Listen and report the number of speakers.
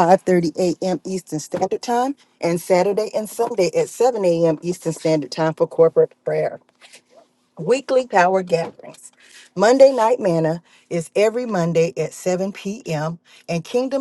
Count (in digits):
1